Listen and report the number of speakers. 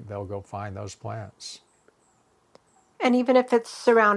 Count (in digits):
2